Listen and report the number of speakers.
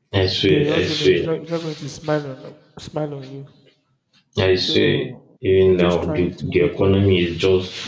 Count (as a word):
two